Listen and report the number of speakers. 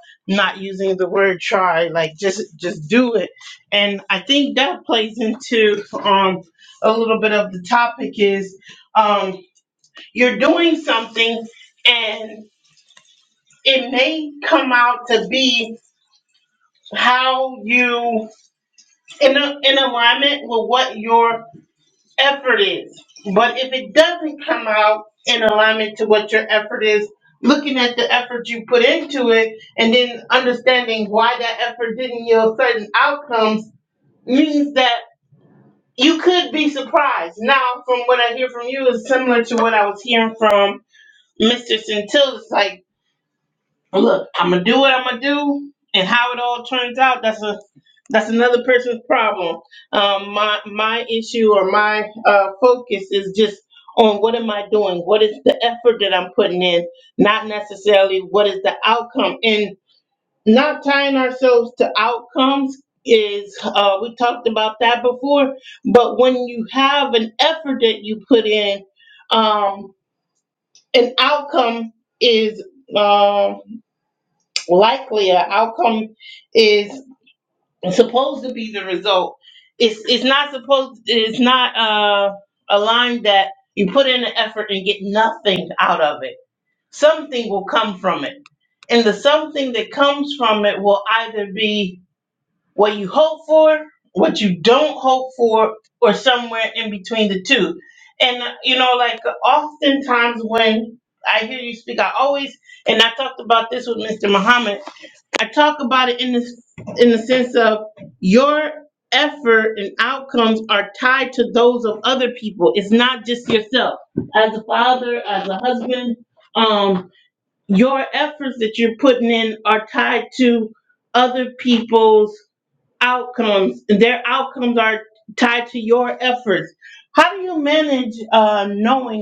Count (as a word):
one